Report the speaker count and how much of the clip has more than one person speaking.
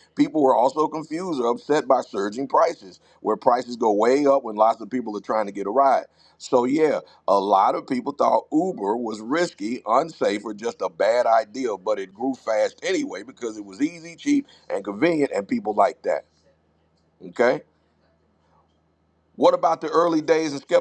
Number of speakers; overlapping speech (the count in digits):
1, no overlap